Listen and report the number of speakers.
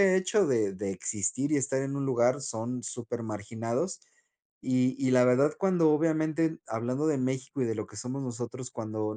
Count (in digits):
1